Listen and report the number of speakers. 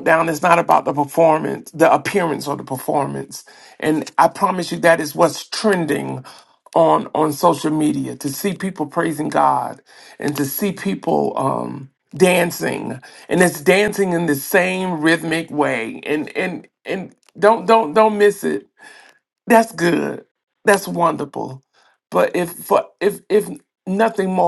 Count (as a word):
one